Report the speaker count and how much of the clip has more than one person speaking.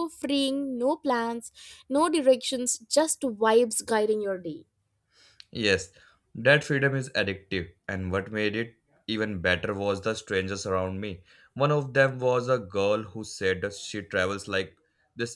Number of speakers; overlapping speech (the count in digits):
2, no overlap